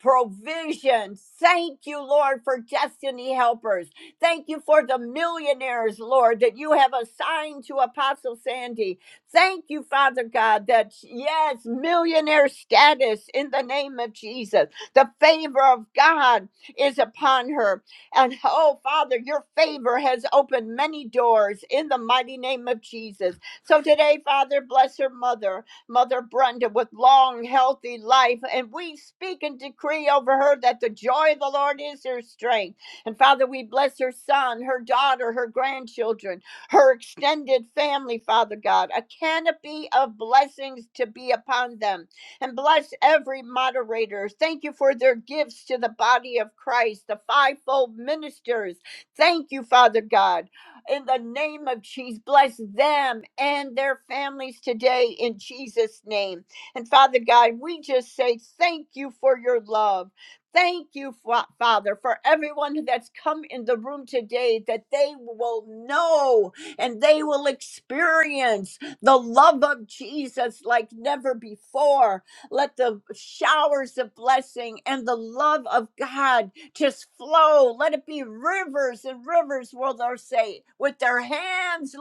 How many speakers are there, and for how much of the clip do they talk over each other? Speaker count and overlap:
1, no overlap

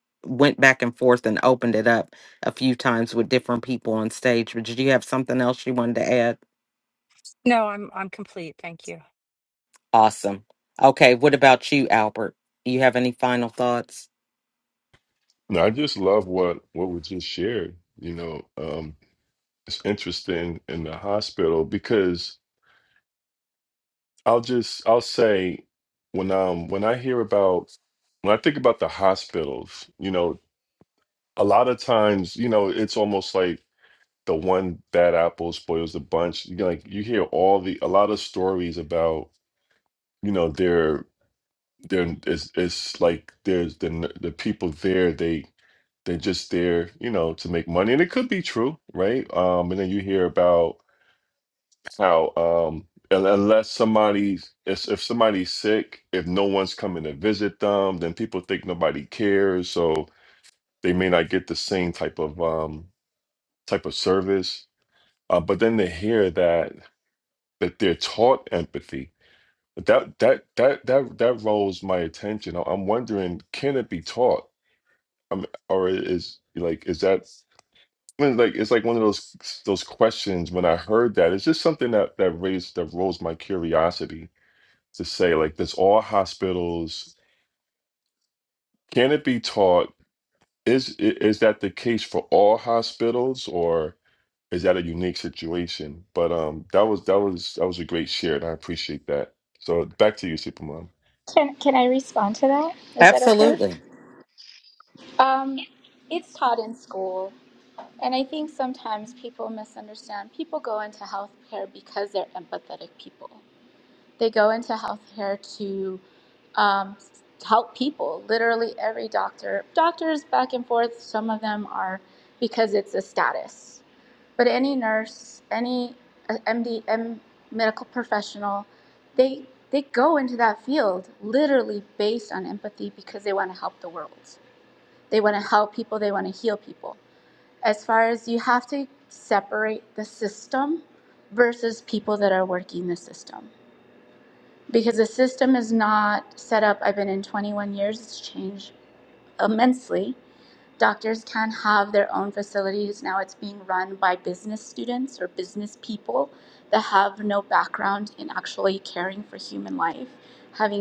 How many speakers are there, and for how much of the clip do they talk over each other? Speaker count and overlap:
4, under 1%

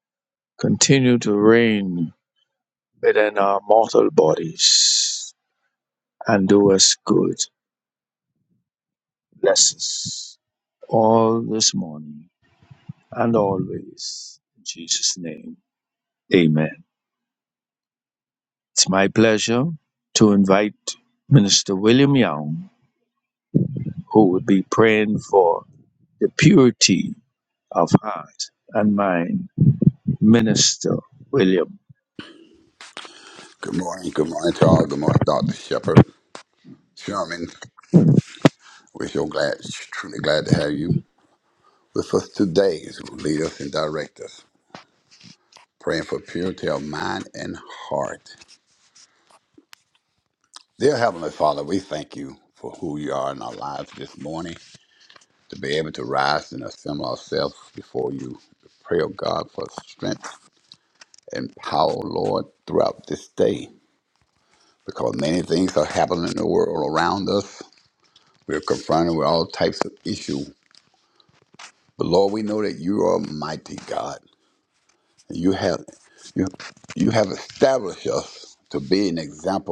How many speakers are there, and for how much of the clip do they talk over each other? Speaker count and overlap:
2, no overlap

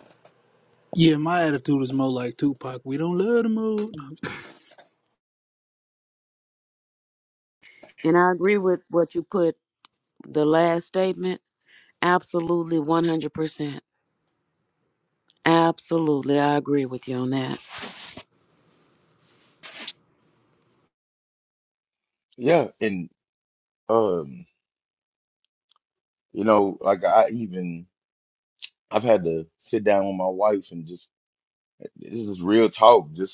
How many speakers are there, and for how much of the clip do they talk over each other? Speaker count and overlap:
3, no overlap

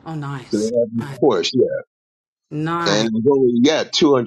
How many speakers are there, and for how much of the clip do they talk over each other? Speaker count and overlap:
2, about 21%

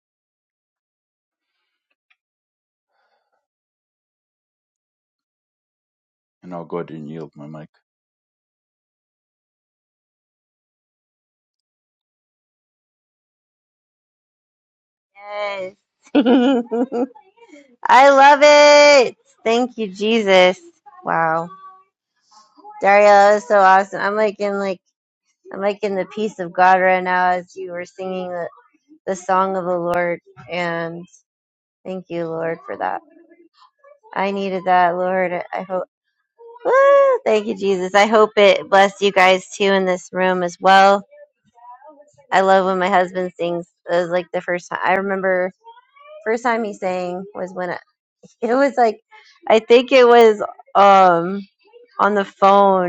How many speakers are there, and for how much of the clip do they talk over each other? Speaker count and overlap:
2, no overlap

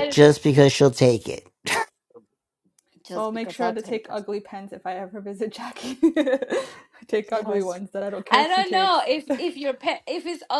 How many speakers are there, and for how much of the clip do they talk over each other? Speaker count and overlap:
3, about 20%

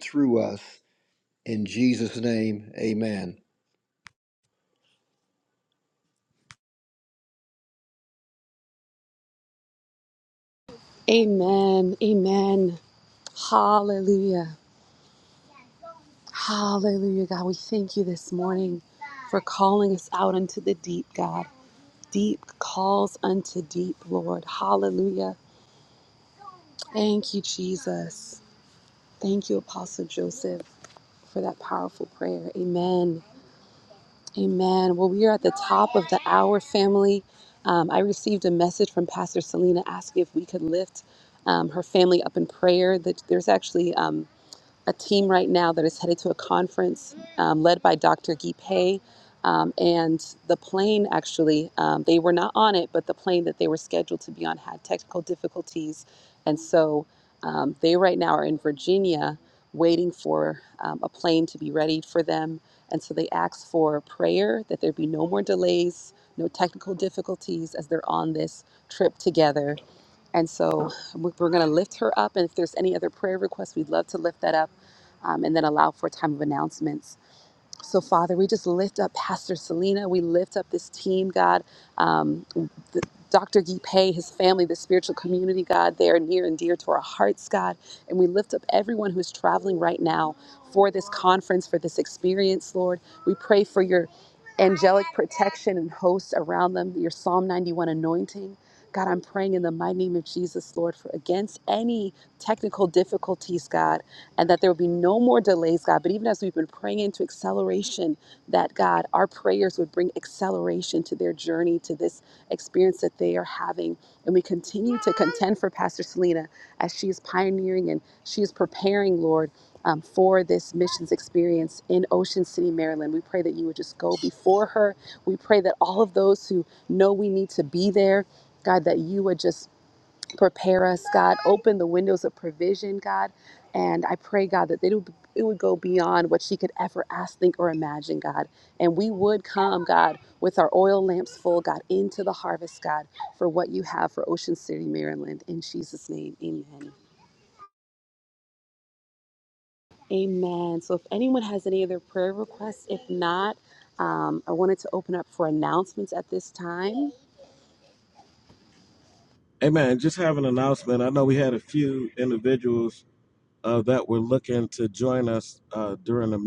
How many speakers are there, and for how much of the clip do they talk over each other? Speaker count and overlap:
3, no overlap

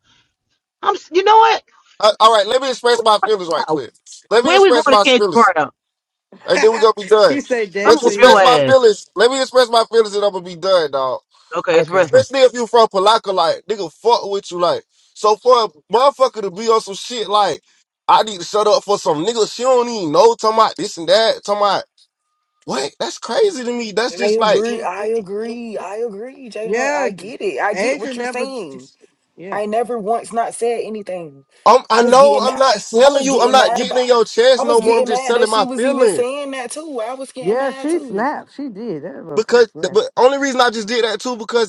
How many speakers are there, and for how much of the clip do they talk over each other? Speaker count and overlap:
4, about 23%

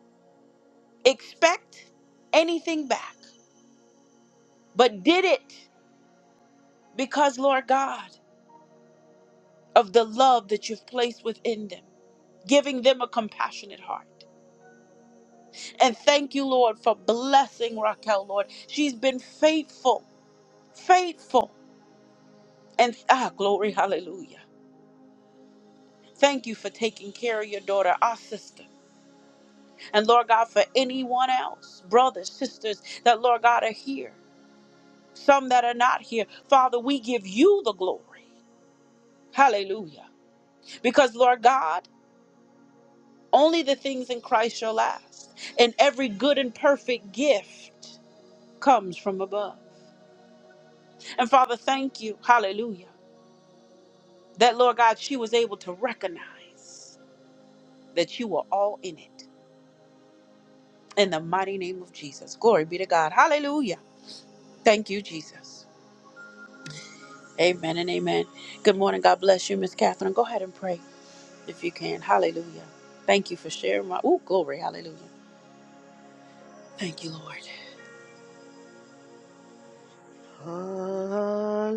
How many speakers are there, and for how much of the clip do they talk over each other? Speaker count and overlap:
2, no overlap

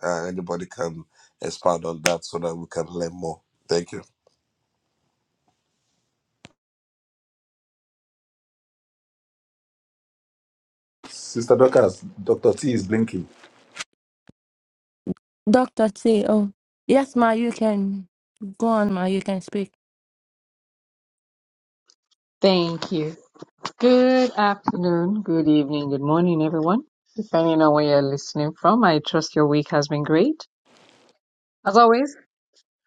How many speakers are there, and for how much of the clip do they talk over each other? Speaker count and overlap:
4, no overlap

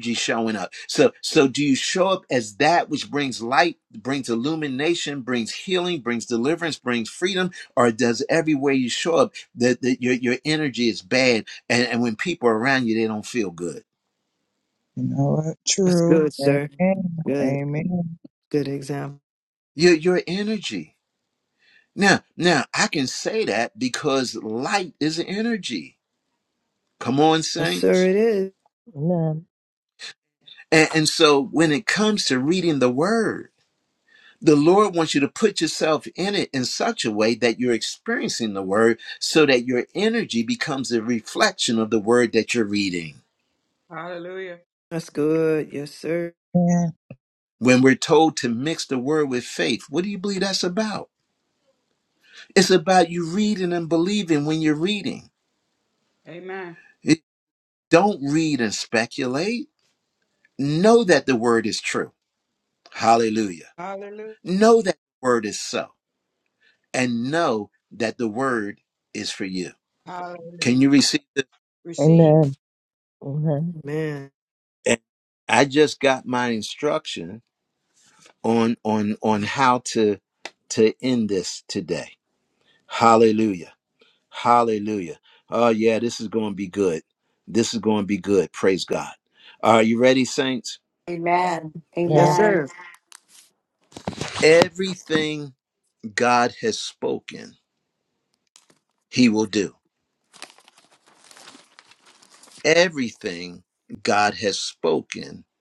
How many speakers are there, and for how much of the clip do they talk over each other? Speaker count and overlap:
6, about 3%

